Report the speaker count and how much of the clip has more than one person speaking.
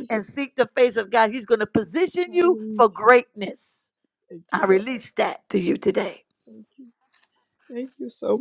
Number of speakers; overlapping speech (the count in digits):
2, about 12%